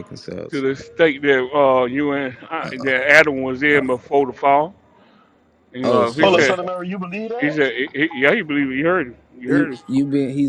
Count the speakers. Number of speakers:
3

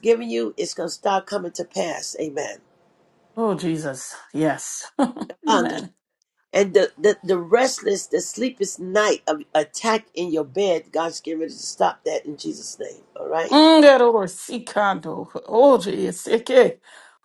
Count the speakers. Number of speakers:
2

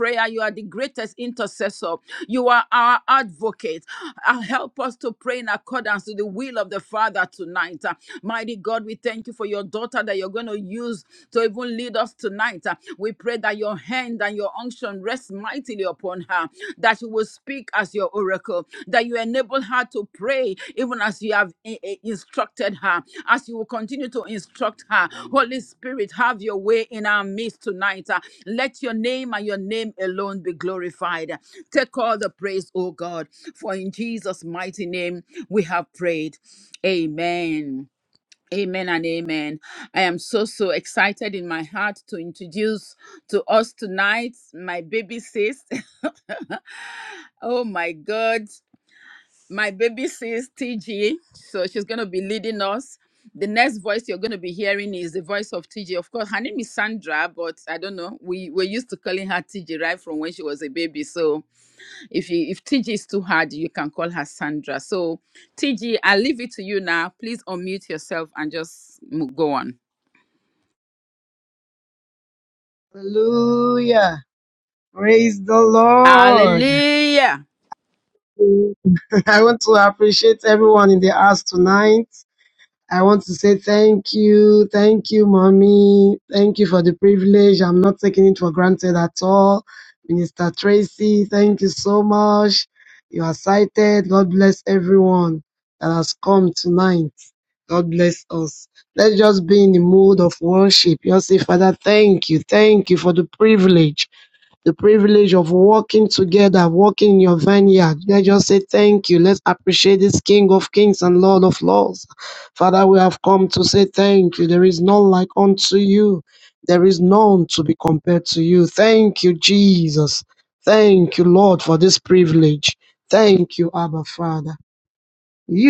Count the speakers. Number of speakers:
2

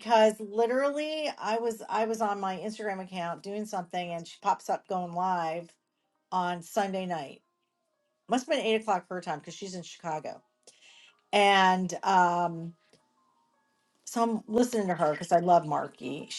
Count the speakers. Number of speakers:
1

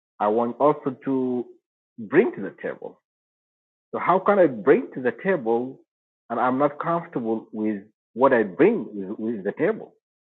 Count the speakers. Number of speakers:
1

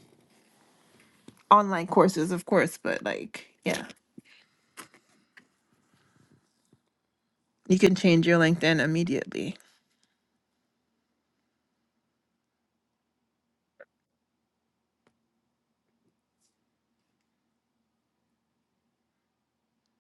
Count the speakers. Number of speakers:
1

